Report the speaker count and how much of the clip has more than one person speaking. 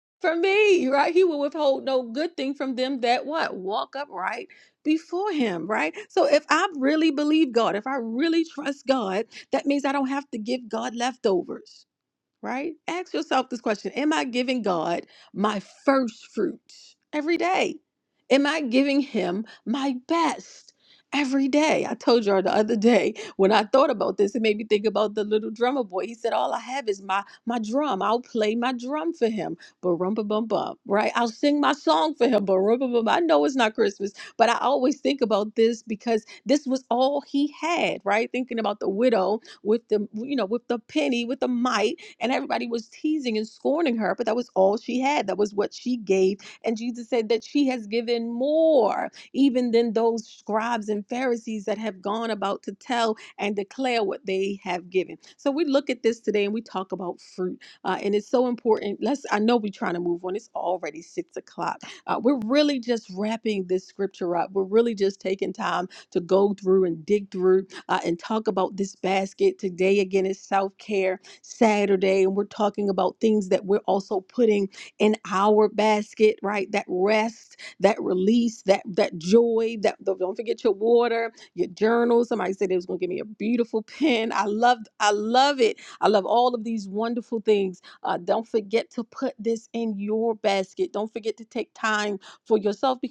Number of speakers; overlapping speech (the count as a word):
one, no overlap